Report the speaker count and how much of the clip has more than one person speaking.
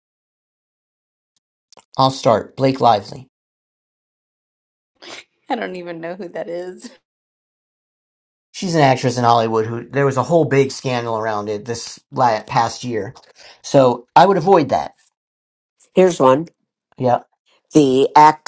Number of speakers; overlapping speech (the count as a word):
three, no overlap